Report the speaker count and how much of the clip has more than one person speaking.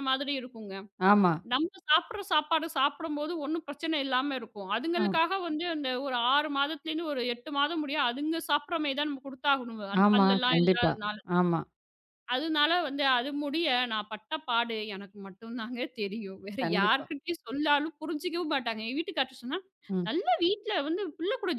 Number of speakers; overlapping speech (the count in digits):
2, about 8%